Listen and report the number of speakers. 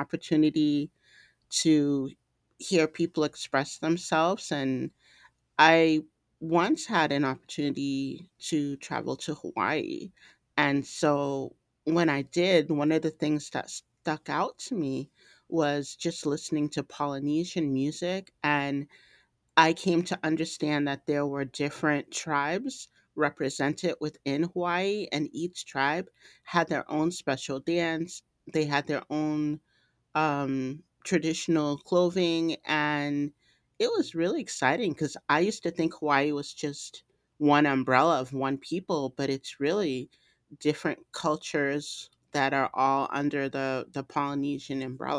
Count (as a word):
one